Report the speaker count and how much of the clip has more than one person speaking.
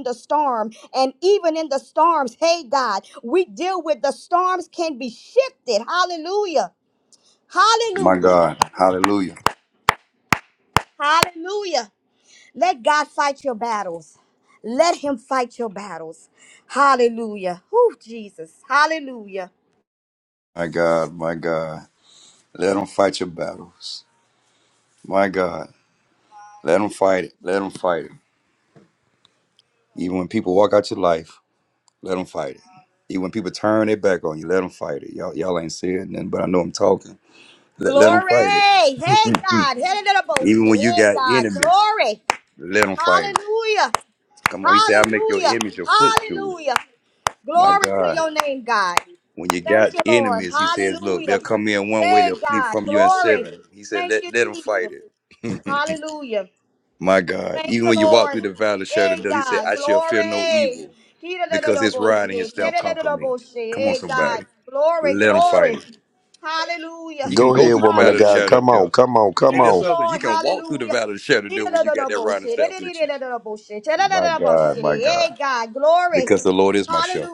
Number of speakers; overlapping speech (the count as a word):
three, about 26%